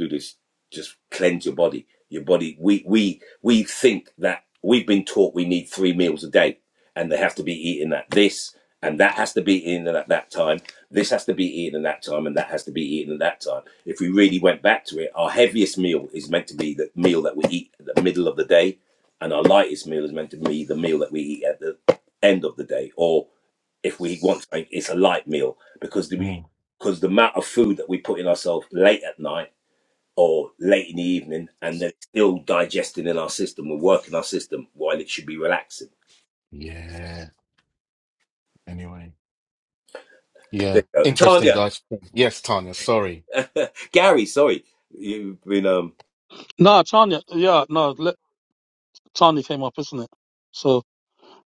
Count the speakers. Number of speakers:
3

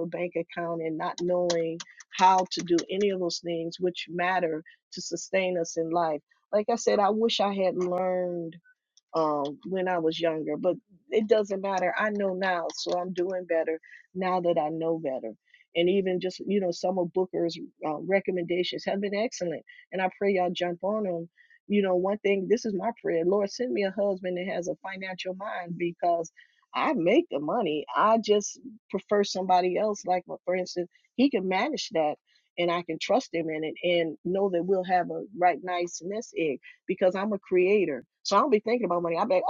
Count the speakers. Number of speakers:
1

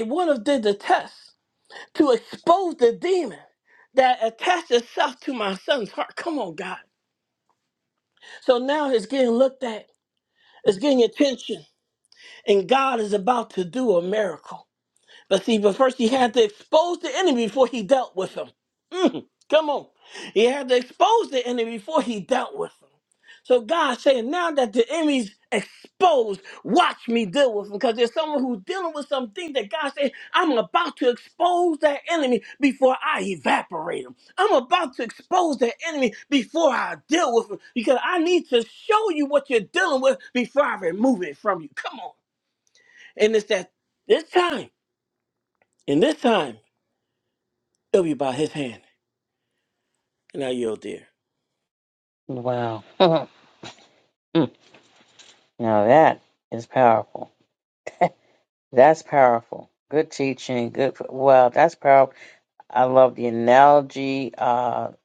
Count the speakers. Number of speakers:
2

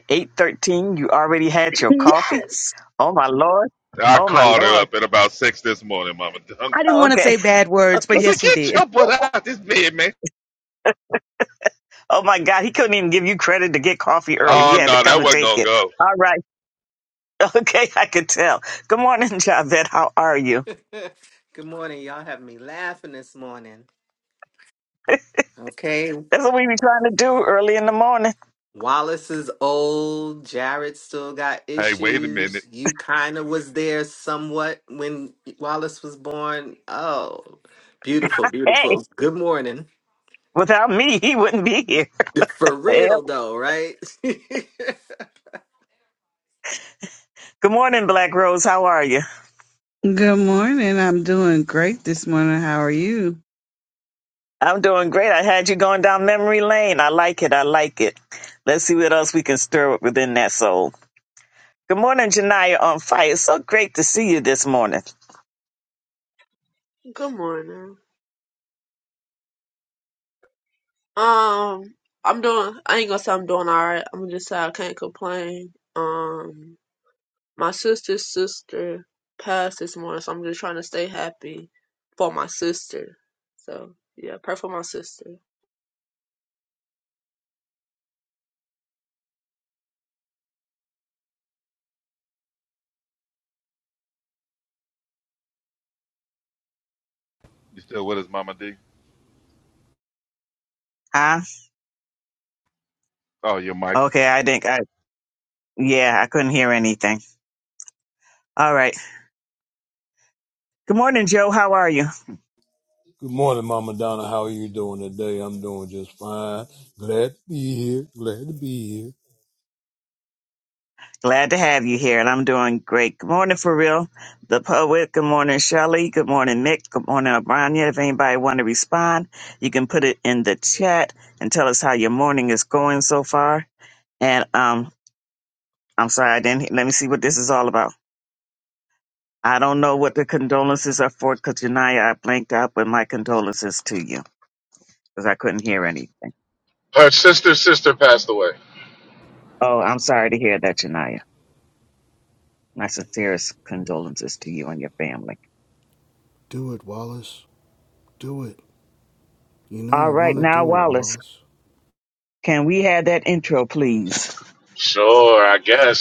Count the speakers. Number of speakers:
9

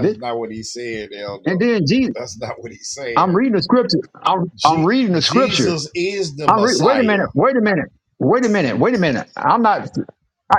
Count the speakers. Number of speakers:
2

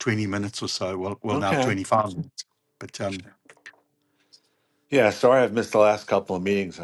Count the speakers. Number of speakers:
2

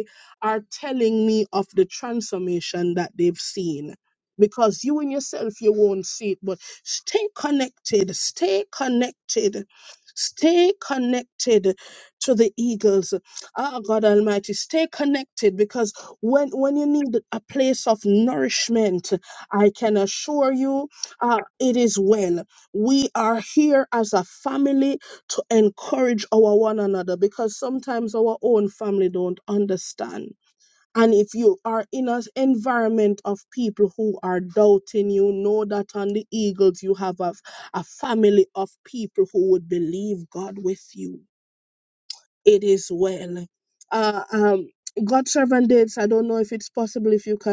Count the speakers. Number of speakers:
1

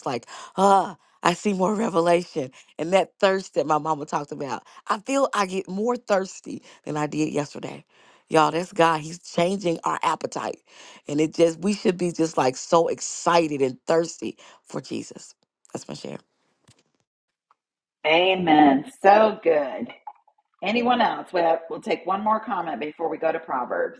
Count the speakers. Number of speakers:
2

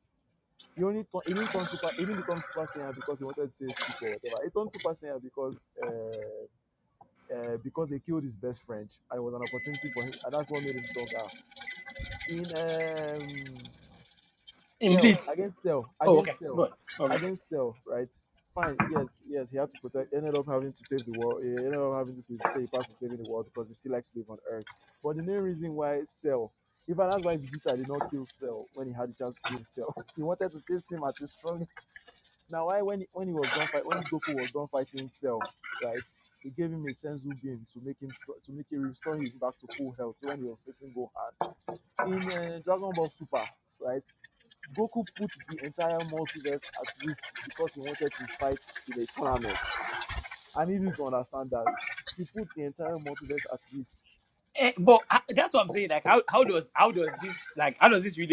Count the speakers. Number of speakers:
2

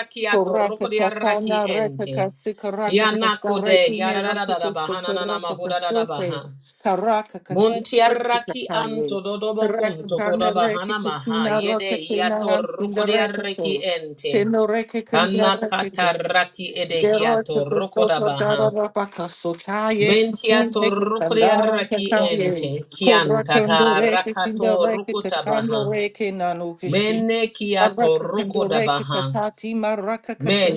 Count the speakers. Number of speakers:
2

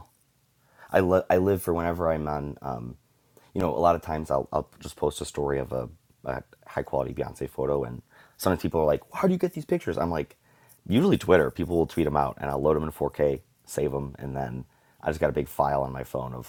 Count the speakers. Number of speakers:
1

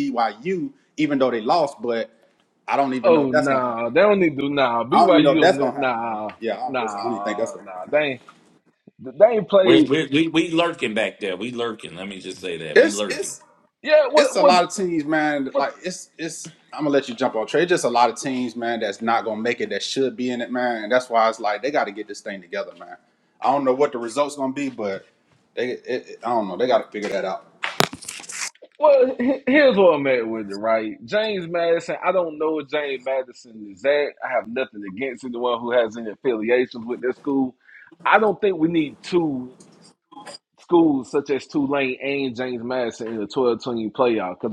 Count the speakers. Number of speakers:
3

